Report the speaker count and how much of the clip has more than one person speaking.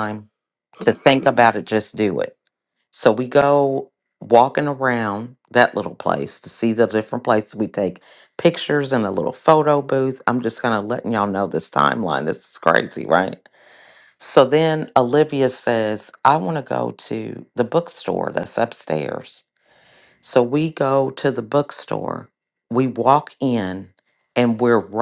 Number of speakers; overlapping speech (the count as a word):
one, no overlap